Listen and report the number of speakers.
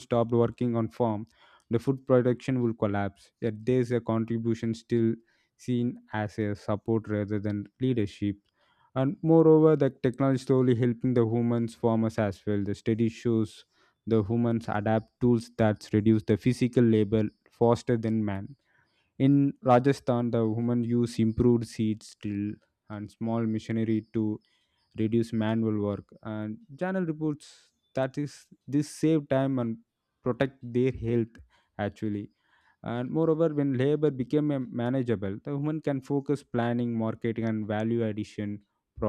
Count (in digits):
1